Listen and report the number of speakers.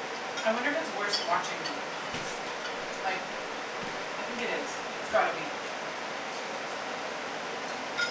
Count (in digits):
1